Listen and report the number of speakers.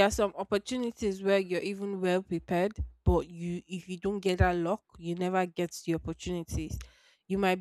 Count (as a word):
one